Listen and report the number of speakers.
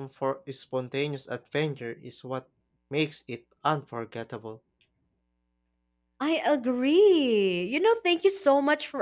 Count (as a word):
two